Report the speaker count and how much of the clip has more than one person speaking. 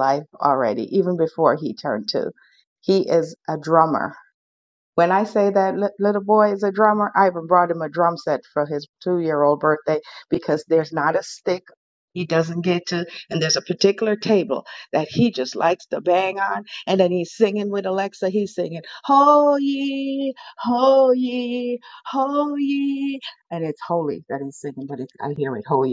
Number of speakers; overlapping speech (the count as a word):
one, no overlap